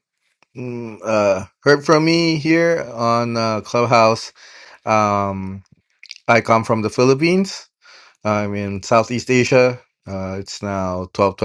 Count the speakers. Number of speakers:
one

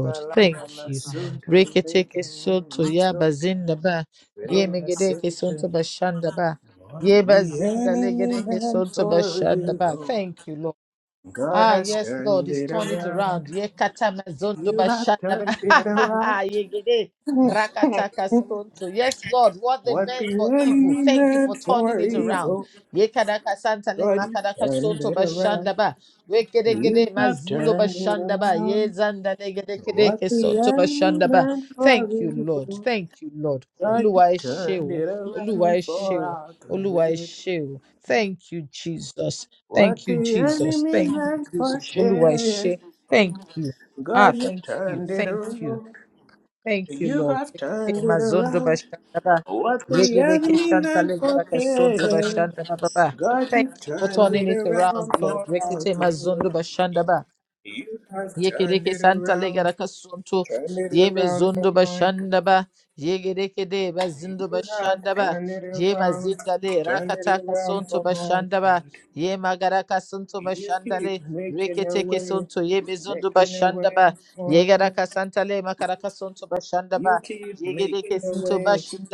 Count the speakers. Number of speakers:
two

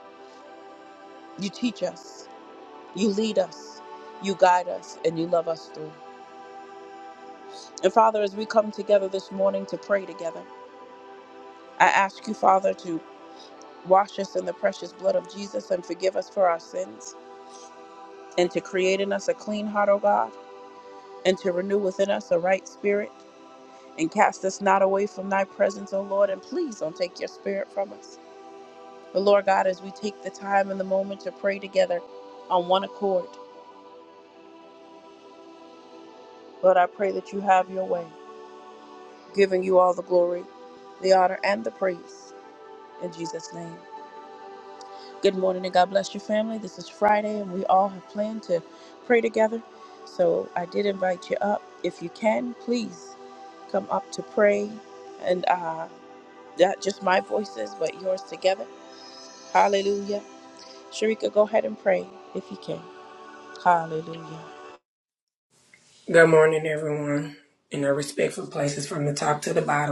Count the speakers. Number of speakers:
two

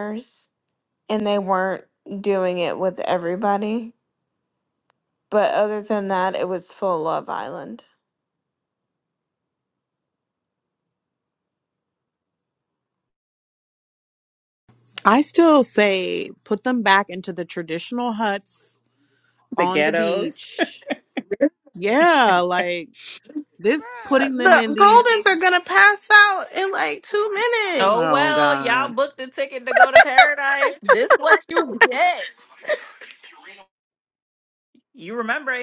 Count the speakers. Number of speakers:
four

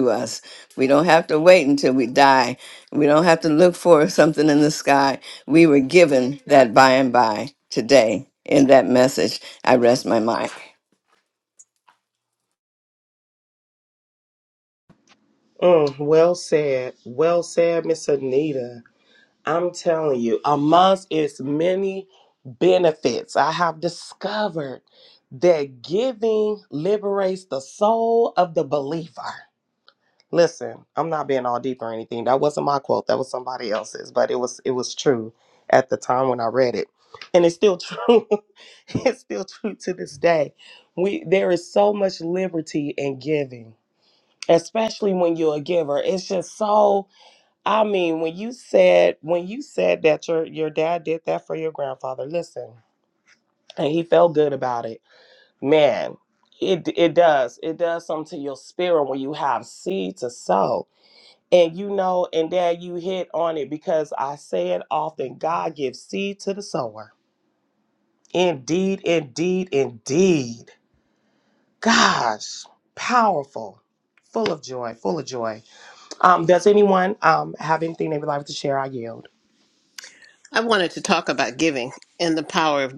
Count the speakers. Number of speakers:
three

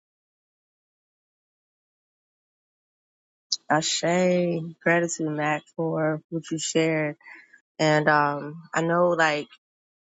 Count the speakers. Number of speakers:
one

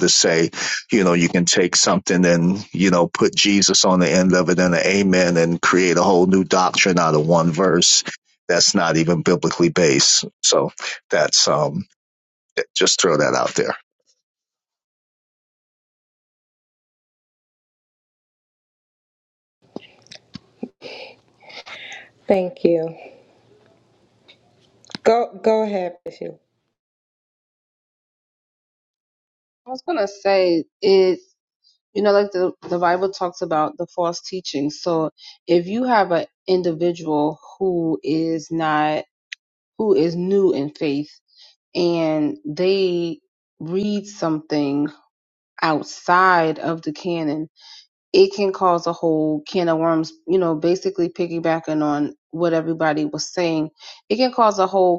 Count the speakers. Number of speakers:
three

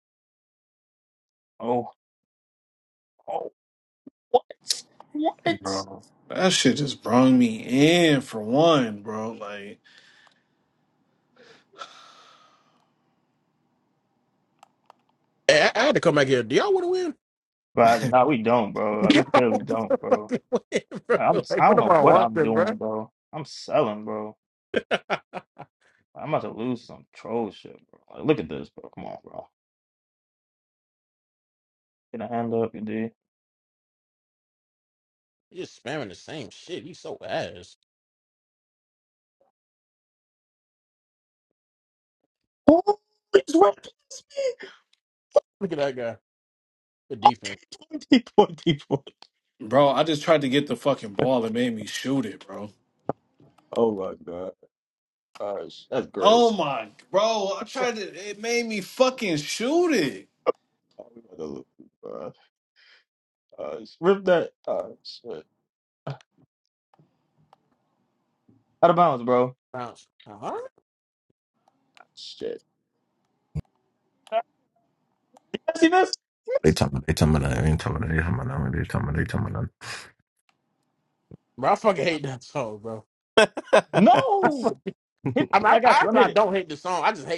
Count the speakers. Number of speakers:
four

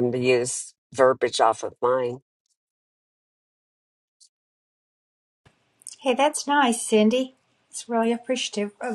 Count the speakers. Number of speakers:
two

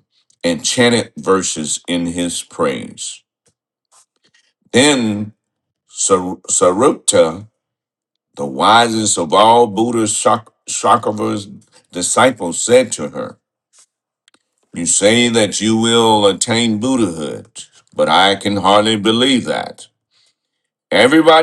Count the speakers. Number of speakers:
one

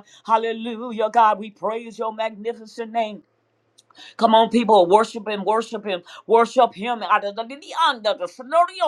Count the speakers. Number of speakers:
one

